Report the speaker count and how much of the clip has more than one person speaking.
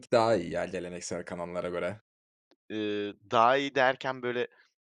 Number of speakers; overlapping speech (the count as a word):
two, no overlap